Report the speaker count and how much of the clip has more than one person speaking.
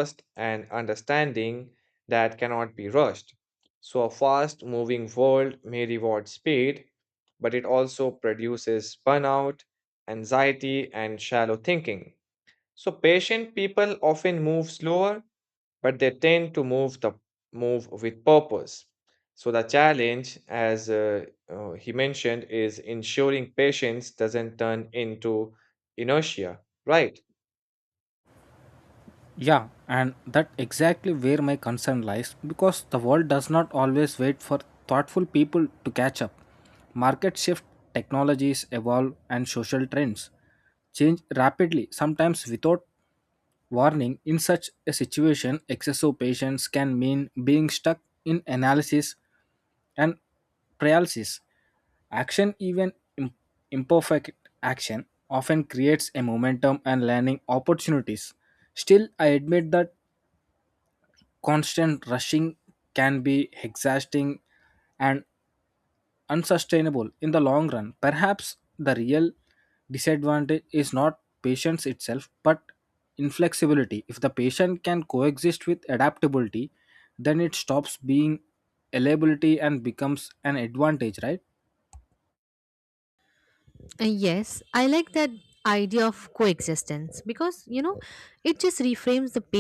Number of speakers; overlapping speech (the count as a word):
three, no overlap